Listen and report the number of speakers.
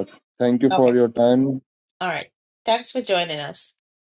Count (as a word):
two